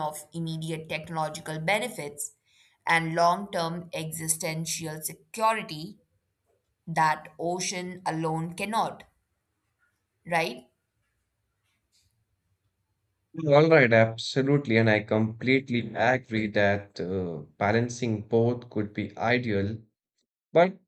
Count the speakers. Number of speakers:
2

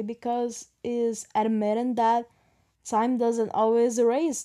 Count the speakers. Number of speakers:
1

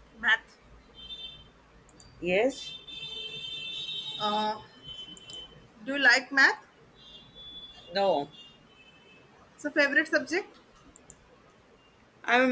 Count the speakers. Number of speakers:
2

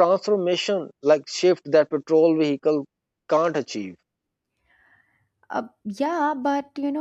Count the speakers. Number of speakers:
2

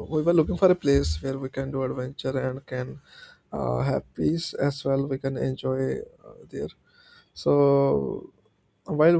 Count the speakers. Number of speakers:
1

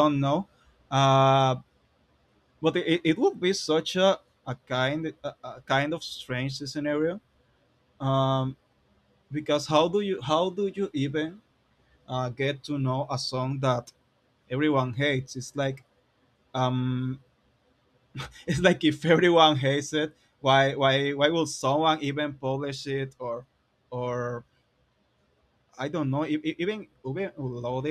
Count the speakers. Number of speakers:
1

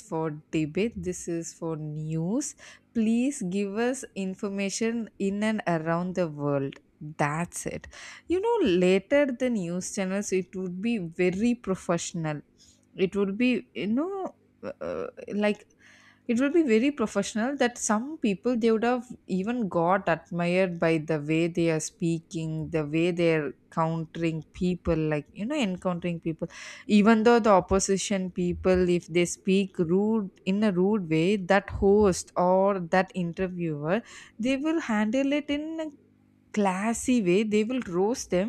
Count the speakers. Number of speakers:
1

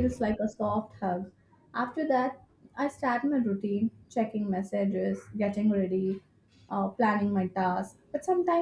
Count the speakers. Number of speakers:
1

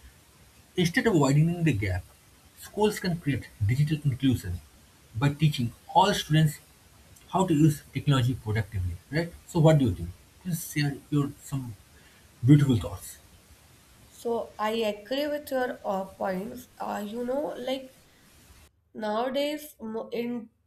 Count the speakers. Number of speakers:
2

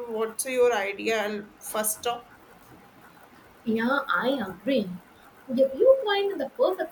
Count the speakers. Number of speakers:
2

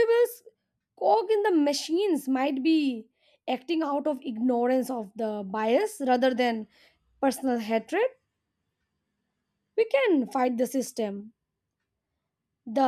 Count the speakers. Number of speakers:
1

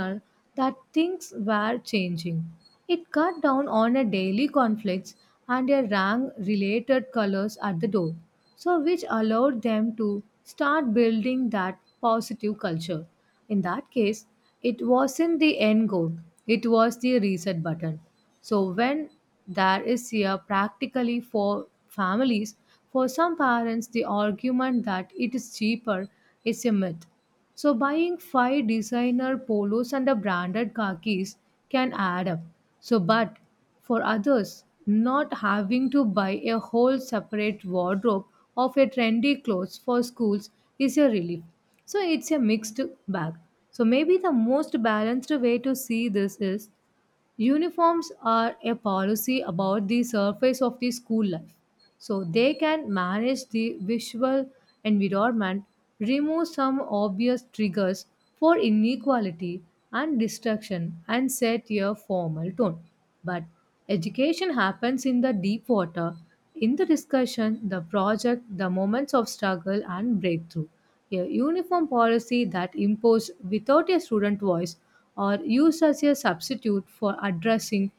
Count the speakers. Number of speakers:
1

